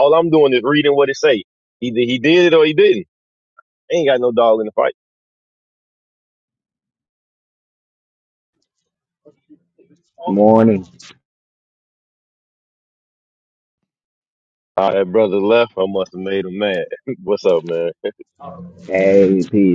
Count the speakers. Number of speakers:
2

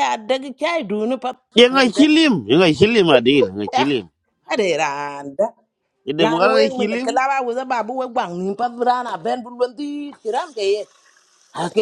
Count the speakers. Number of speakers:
2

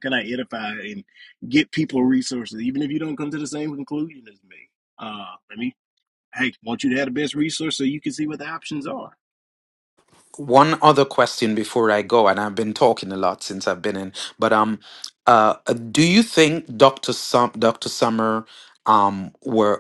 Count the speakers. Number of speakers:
2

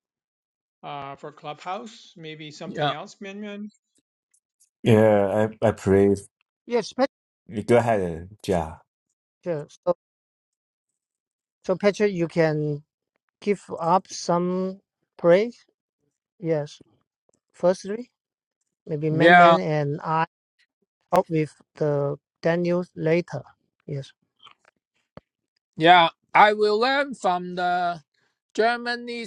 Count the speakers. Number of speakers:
4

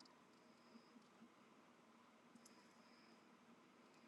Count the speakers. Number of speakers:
0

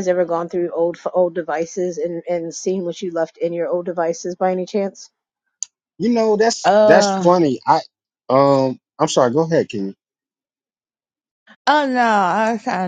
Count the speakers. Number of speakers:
3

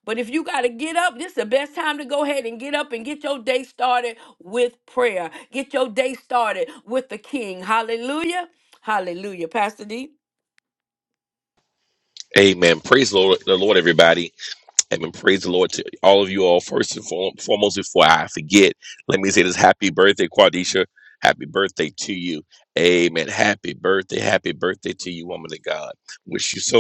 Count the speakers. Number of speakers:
2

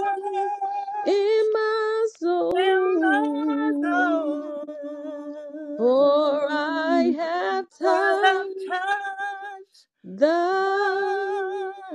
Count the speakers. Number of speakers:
2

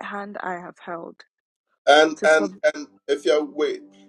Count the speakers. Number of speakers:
2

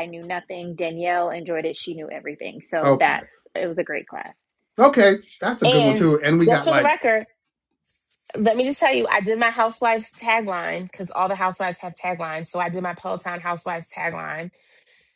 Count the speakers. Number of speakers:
3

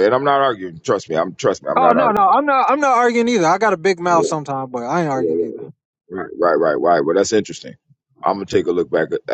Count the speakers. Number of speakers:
2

